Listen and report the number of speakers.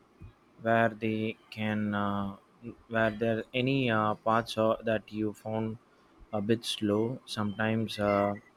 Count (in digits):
1